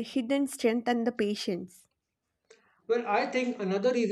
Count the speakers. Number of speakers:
2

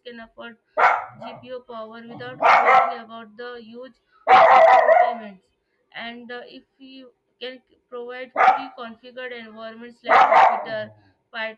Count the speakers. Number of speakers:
1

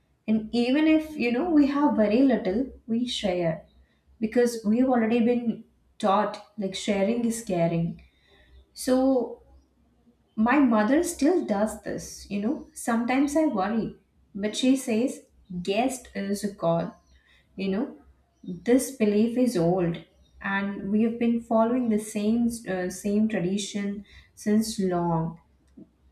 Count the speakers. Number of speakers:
1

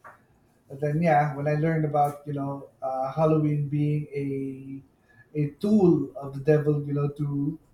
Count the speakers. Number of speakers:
1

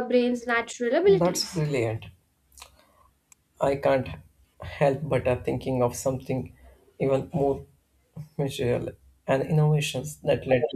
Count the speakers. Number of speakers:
2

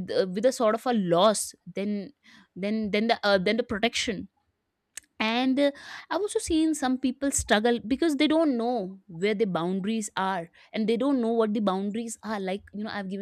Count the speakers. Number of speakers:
1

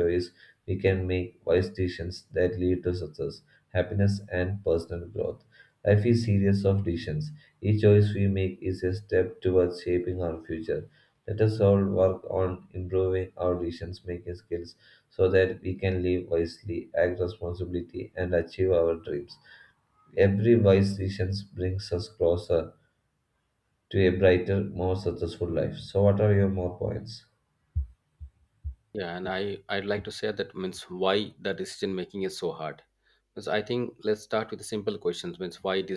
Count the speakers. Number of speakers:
2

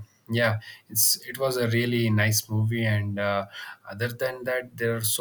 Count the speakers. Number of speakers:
1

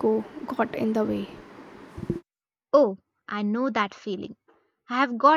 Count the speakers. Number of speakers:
2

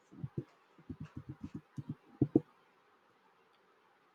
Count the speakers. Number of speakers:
0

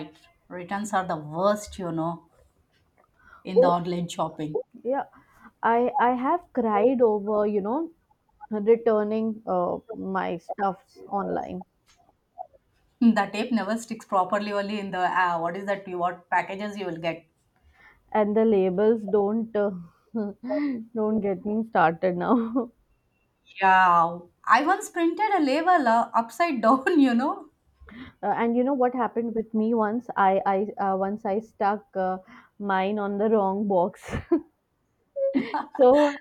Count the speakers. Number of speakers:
2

